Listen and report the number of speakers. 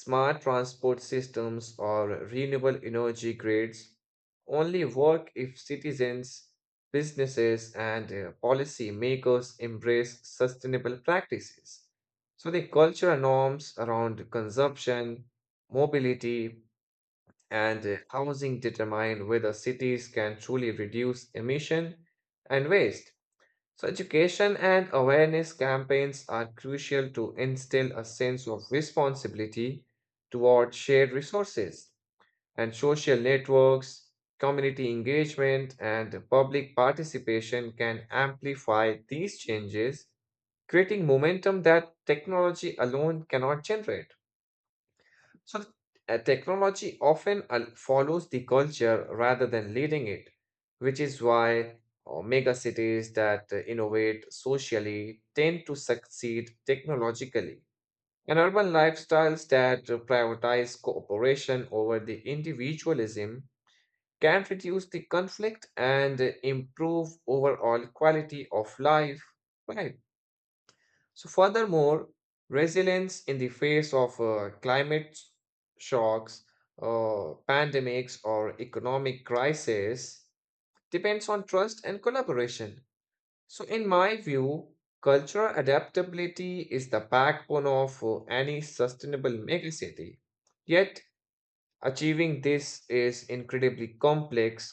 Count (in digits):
1